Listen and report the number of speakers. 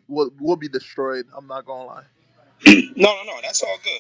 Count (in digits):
2